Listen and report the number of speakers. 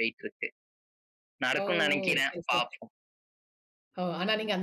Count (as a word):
two